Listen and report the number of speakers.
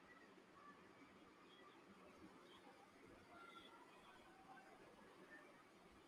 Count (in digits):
0